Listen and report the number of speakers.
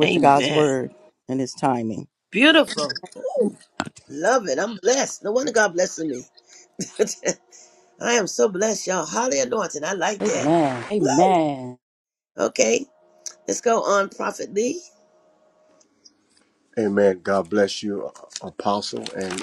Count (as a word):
four